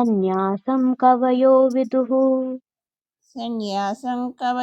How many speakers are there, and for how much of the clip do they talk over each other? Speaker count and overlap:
2, no overlap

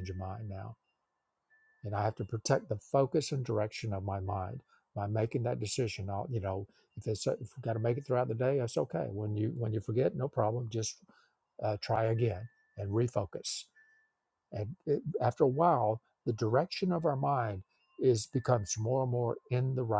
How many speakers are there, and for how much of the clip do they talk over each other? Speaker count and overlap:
1, no overlap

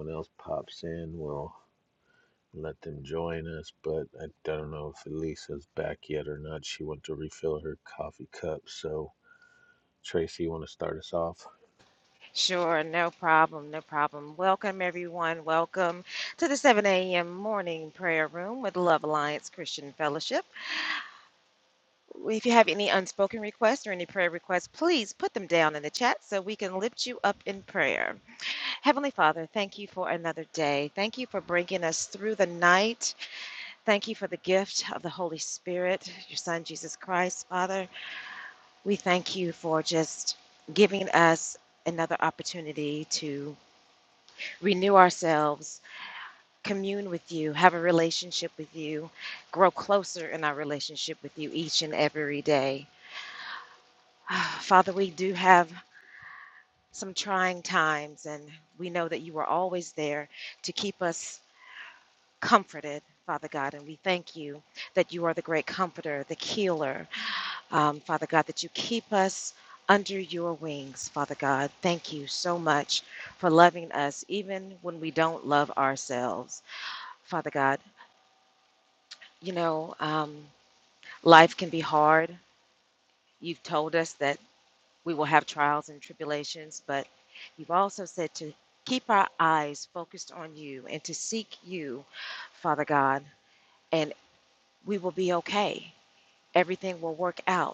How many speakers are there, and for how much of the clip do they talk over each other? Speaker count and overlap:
2, no overlap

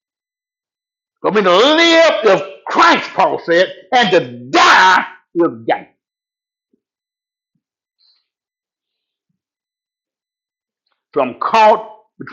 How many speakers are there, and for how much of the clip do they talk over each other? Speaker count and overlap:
1, no overlap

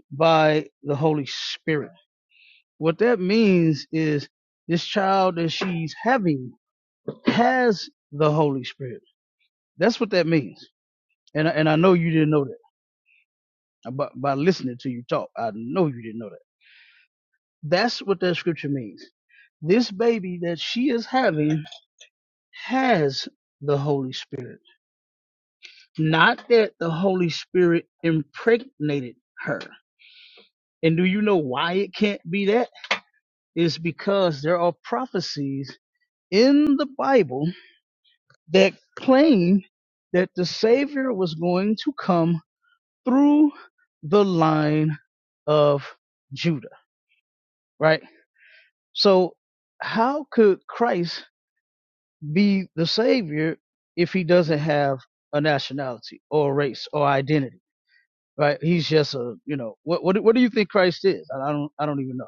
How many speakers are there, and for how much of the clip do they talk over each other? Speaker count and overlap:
1, no overlap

